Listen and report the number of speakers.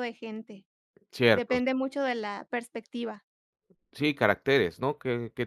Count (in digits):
2